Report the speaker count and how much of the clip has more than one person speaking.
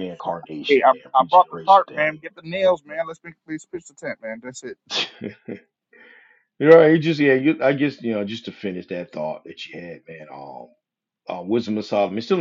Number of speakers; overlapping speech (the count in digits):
2, about 12%